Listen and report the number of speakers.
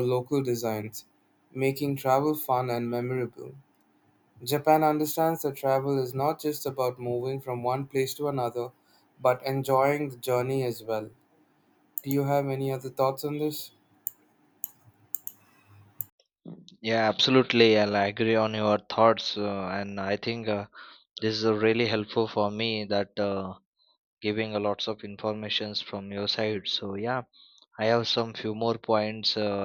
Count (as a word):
two